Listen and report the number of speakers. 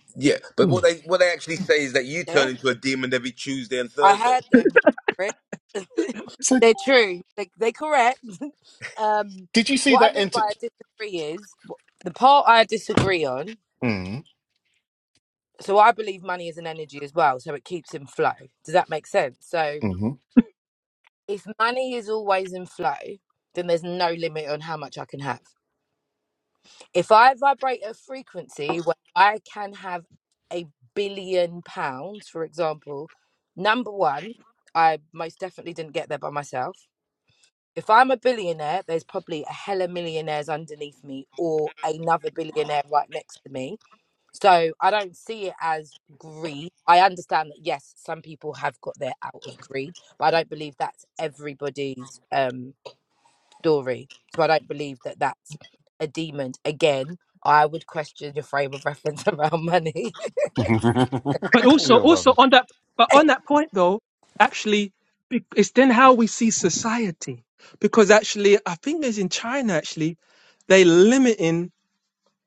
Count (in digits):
4